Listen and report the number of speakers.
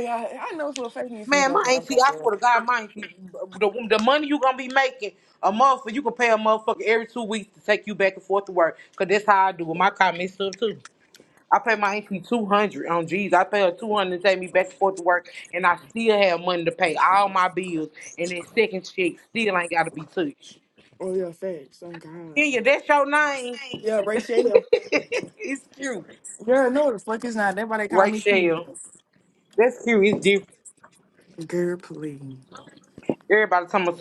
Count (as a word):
two